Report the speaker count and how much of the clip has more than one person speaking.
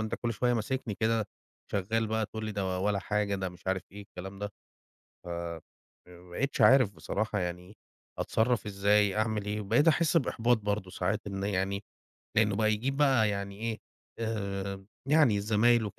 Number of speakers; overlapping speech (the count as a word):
one, no overlap